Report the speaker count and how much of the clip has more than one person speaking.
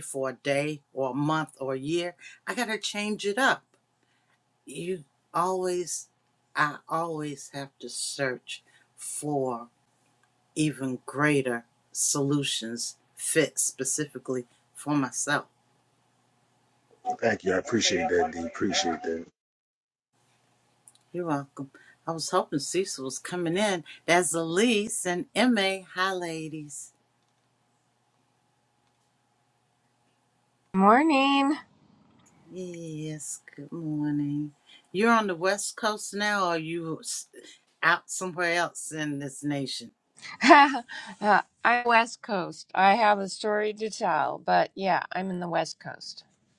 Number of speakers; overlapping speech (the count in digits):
3, no overlap